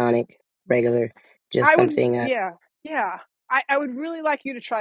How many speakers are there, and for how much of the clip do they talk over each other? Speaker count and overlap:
2, about 14%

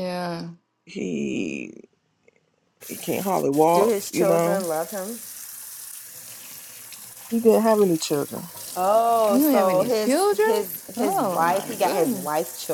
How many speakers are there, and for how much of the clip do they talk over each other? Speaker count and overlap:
3, about 28%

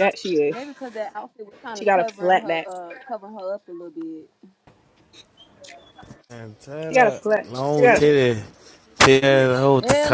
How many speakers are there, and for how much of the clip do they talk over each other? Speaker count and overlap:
3, about 19%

